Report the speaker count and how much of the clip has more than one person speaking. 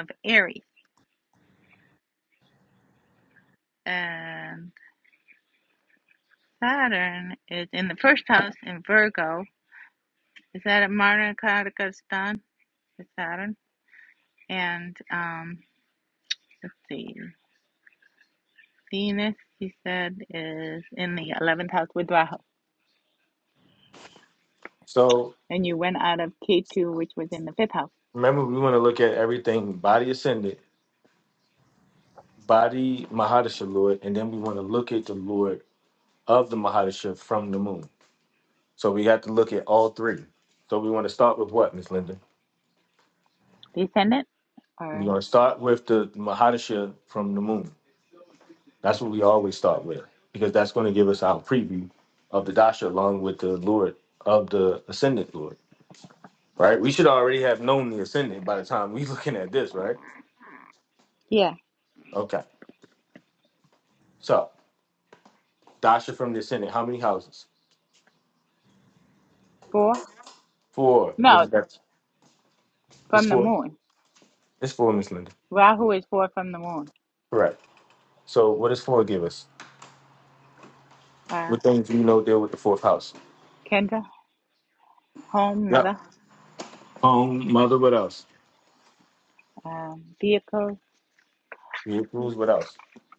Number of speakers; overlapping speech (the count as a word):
two, about 1%